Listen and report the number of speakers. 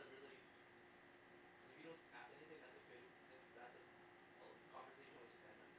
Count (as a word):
one